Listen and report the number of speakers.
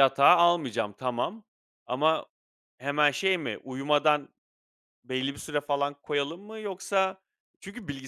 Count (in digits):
1